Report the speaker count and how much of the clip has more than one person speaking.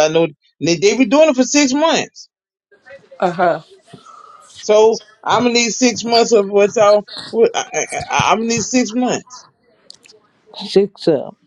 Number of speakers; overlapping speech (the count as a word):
two, no overlap